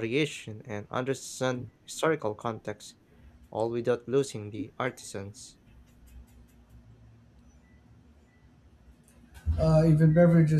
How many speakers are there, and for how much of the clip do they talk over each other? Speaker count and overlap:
2, no overlap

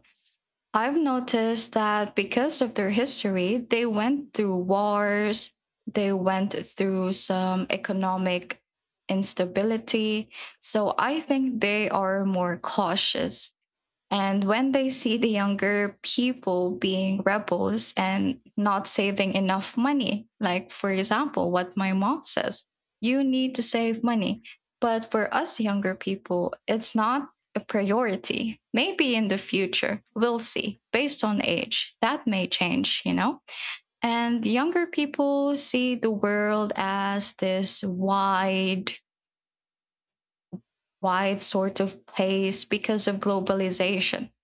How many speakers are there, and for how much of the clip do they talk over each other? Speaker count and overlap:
1, no overlap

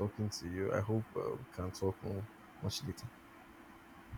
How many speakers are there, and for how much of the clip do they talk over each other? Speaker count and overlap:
1, no overlap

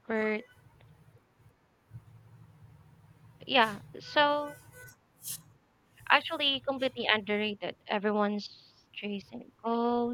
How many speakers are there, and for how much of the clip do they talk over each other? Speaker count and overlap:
1, no overlap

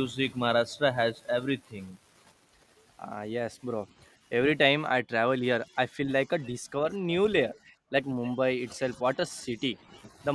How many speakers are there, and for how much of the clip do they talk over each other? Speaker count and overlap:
2, no overlap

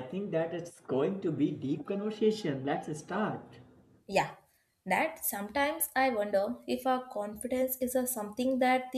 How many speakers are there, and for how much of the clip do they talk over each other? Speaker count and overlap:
2, no overlap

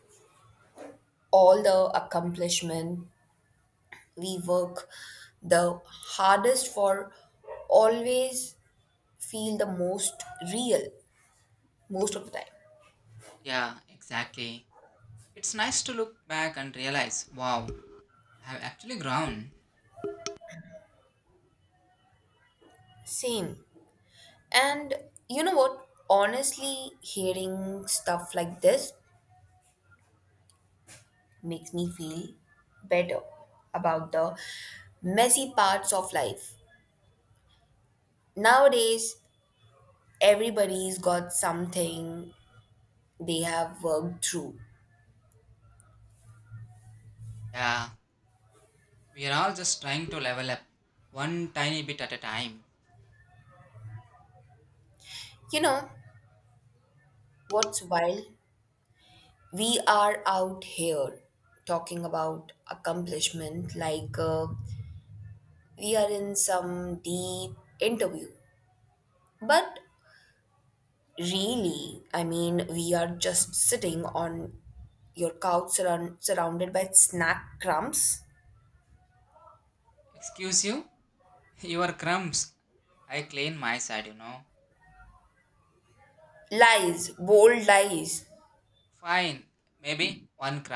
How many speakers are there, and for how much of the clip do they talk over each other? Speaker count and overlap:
2, no overlap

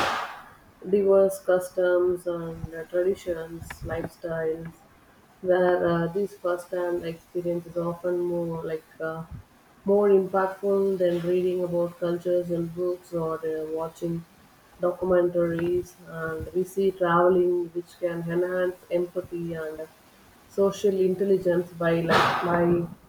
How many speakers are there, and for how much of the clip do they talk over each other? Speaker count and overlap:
1, no overlap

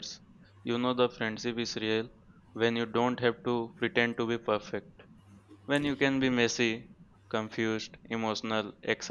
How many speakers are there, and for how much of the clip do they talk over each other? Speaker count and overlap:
1, no overlap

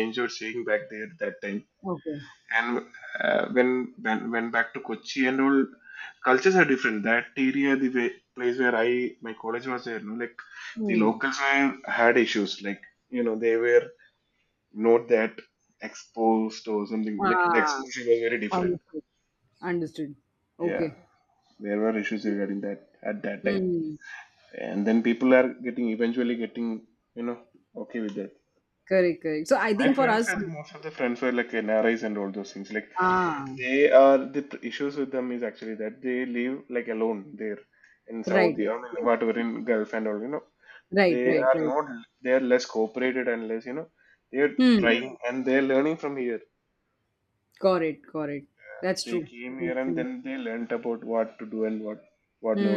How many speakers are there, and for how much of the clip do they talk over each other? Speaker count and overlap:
2, about 10%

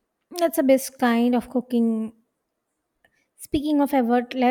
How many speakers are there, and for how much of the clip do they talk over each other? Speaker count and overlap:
1, no overlap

